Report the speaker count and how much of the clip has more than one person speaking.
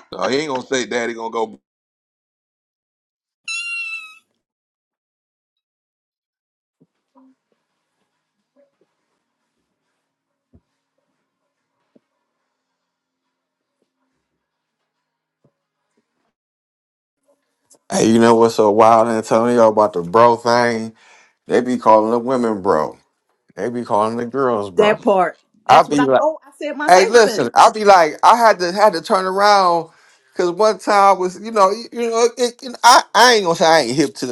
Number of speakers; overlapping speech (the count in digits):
3, about 4%